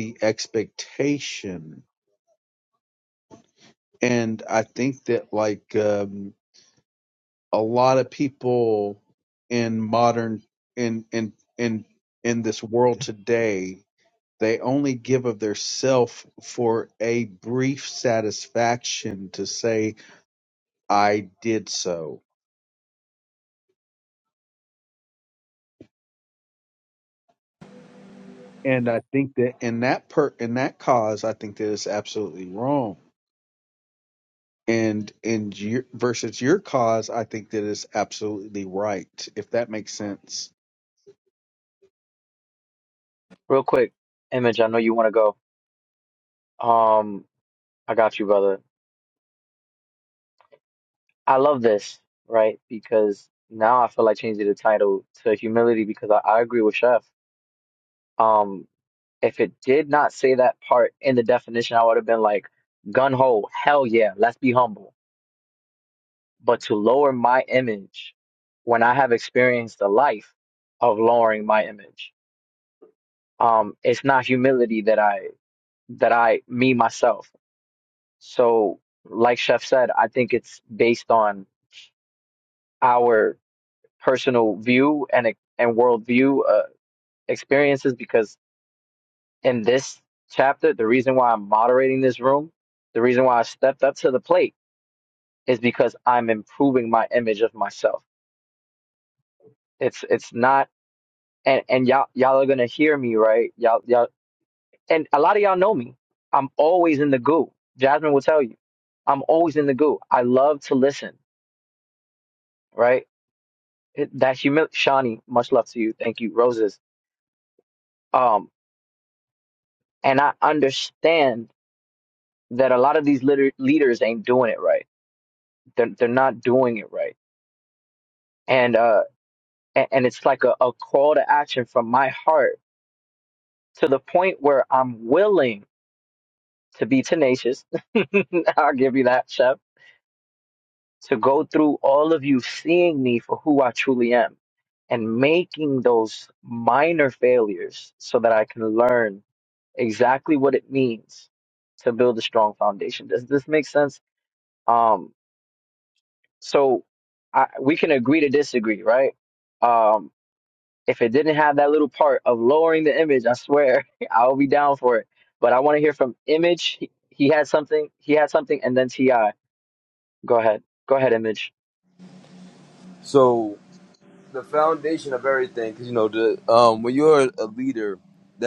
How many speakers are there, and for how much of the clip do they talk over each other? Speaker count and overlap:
3, no overlap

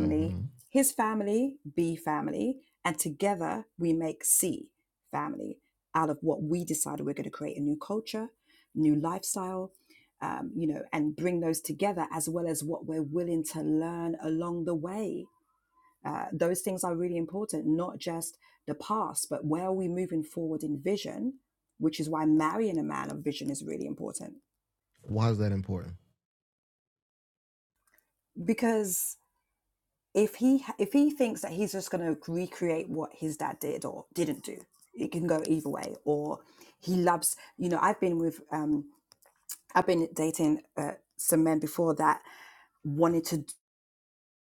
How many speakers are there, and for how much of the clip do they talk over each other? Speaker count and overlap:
2, about 1%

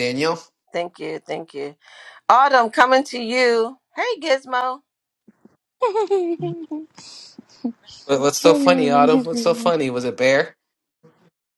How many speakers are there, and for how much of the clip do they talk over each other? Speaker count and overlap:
3, about 10%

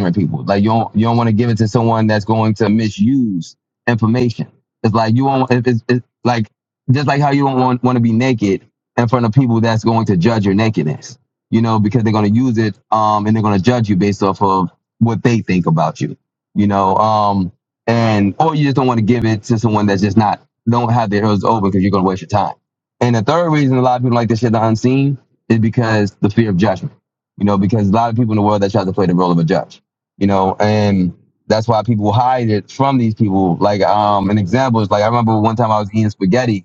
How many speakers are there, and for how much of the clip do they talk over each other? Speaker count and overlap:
1, no overlap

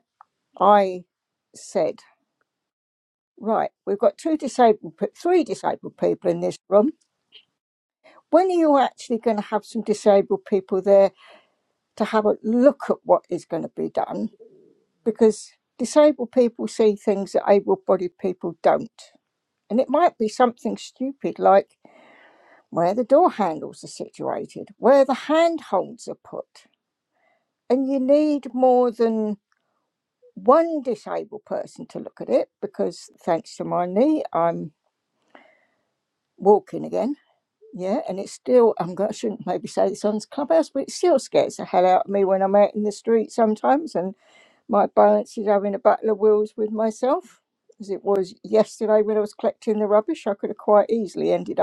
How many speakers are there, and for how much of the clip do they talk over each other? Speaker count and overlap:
1, no overlap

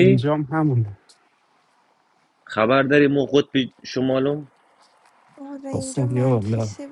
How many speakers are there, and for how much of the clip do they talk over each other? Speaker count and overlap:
3, about 17%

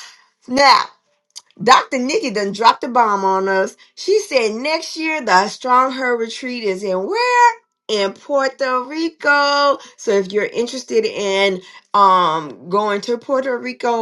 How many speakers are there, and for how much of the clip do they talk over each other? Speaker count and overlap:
1, no overlap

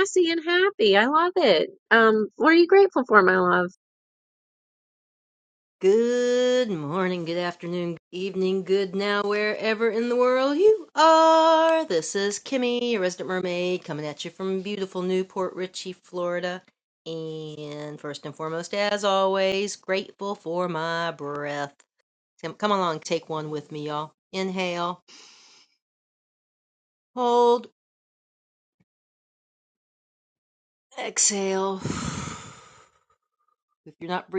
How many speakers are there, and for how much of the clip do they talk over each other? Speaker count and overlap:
2, no overlap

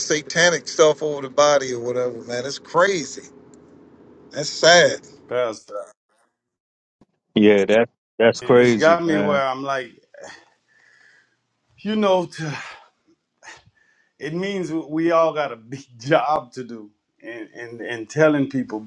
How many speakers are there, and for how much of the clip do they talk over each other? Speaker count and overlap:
3, about 5%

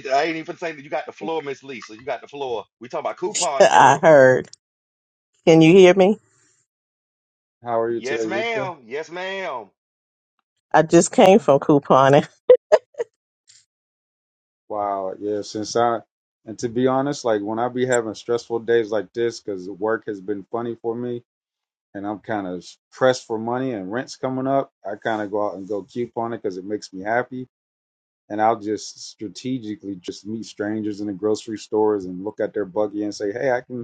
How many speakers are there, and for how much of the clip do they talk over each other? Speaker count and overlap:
3, about 4%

